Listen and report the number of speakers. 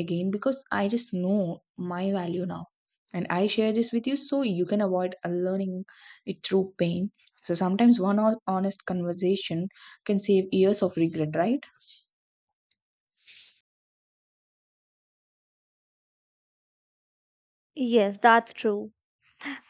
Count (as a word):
two